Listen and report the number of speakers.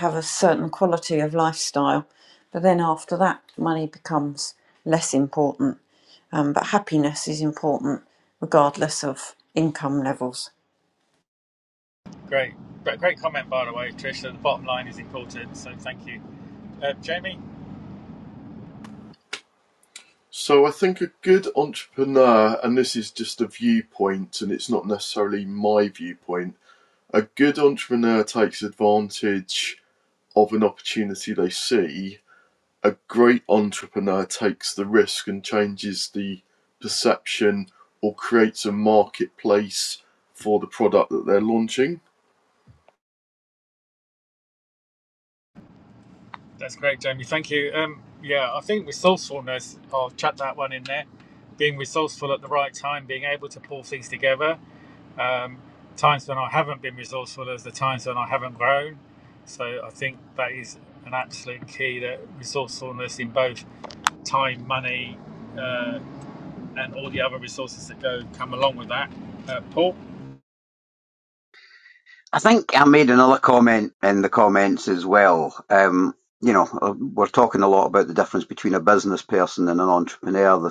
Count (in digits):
4